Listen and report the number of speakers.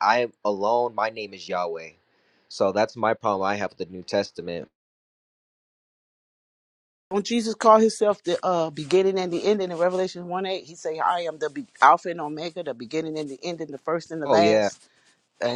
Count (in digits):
2